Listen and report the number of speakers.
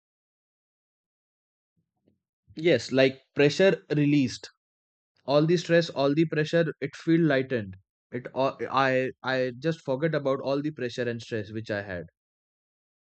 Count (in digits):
1